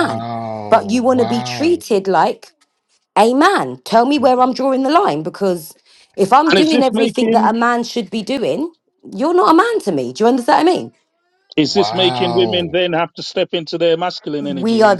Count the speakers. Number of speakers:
three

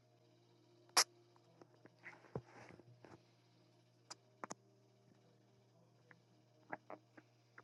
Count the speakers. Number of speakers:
zero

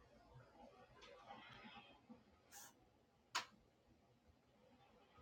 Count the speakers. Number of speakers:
zero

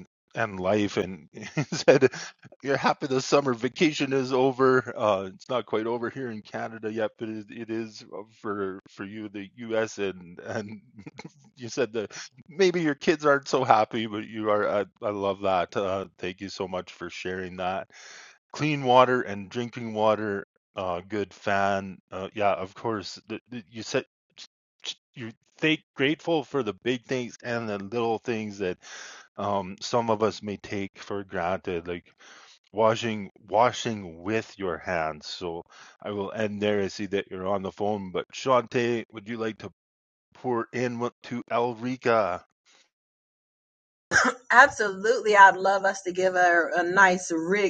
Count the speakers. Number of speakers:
two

